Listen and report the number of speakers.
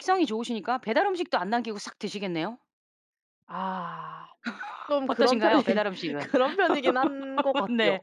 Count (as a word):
two